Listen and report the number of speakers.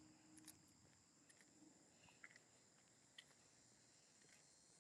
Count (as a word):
zero